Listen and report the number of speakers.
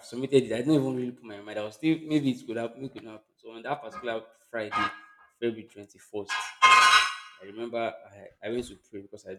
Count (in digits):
1